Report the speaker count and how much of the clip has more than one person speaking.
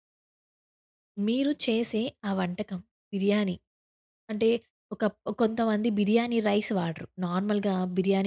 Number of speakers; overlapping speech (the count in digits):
1, no overlap